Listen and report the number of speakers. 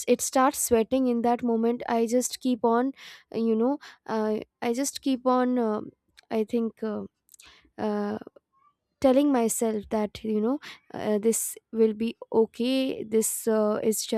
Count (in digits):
1